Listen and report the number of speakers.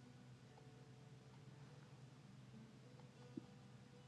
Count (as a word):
zero